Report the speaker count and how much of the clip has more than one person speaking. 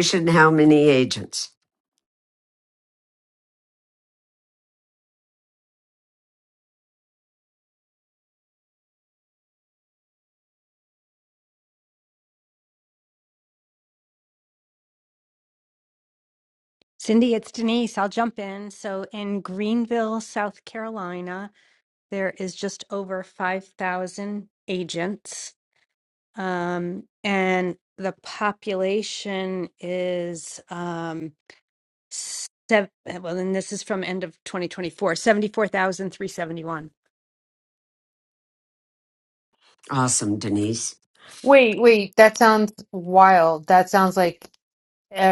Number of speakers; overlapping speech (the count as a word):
three, no overlap